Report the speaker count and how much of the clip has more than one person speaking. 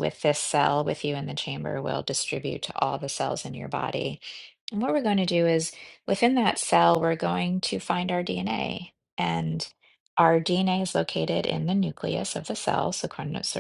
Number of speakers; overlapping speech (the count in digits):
1, no overlap